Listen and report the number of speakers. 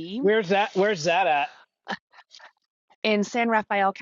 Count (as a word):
two